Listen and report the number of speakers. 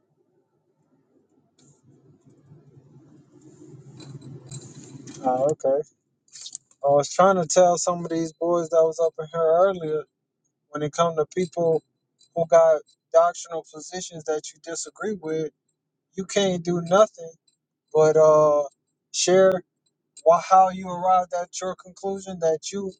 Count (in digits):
1